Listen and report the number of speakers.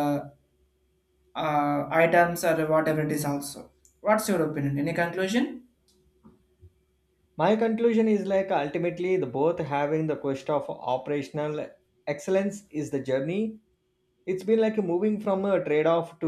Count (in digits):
2